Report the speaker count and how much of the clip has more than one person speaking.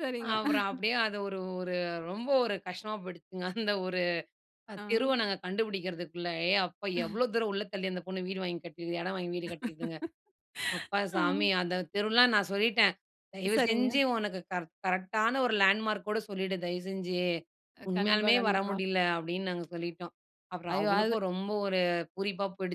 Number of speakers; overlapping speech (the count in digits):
2, about 10%